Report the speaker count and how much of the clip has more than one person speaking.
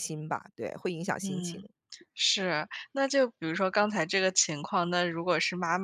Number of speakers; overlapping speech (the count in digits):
2, about 6%